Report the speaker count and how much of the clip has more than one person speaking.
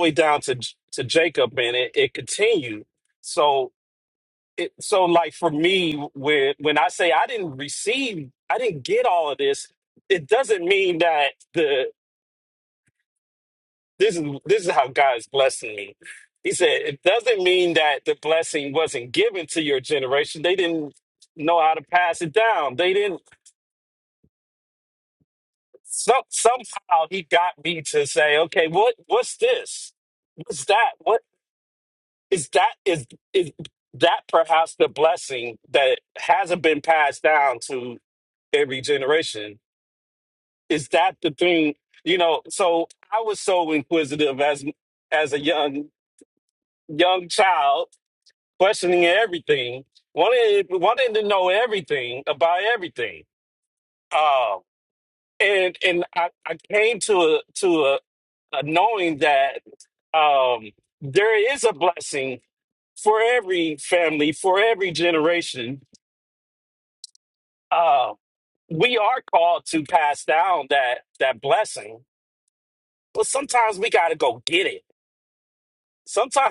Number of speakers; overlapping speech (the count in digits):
1, no overlap